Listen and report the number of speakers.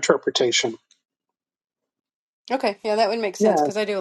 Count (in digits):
2